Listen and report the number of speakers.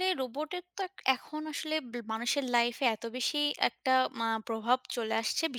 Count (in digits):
1